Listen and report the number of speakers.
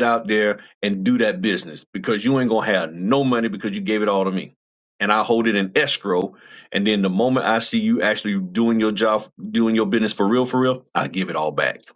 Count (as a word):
one